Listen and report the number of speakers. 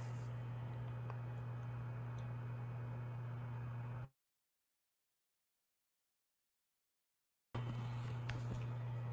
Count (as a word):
zero